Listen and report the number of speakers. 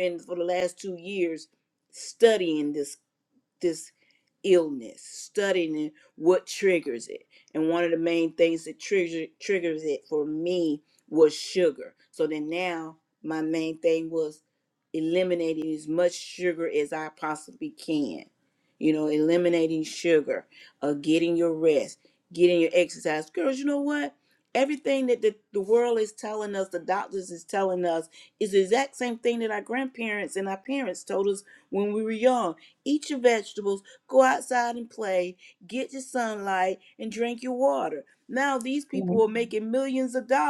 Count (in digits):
1